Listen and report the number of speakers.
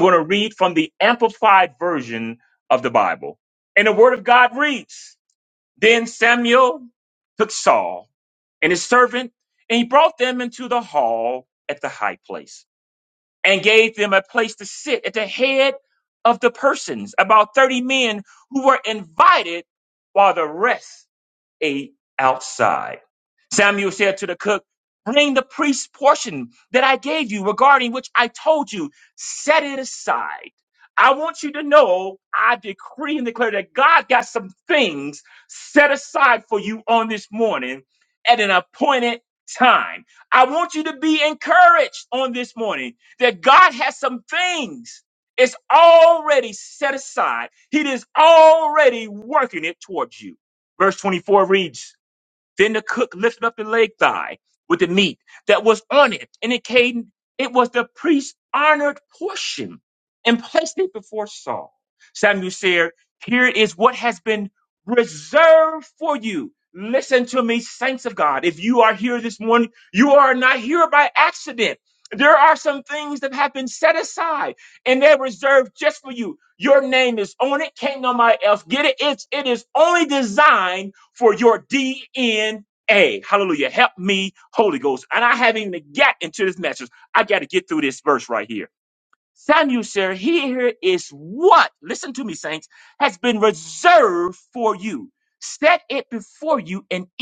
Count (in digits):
1